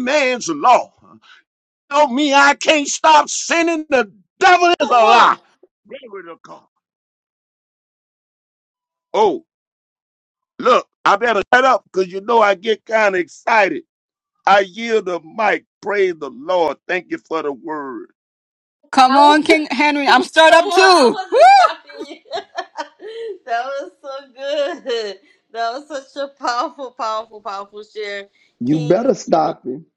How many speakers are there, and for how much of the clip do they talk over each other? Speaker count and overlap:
four, about 7%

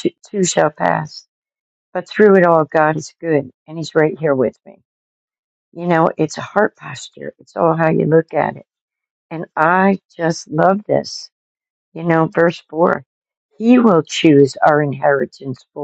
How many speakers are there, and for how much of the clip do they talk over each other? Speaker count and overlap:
one, no overlap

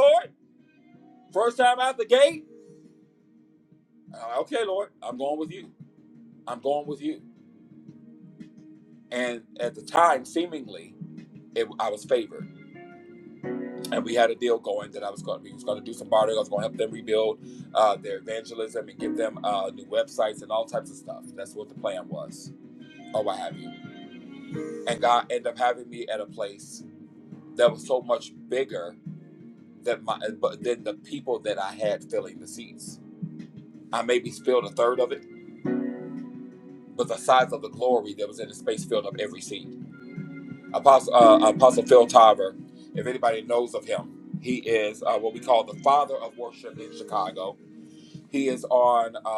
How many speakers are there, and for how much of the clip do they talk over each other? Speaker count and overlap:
one, no overlap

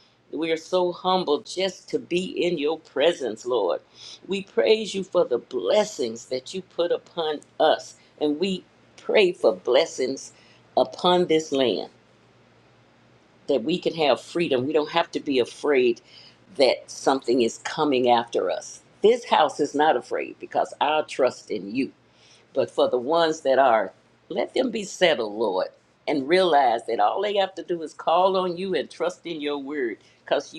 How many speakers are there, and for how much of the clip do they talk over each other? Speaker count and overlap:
one, no overlap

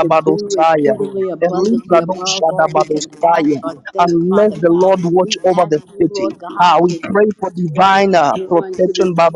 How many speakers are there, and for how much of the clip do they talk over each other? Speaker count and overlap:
two, about 91%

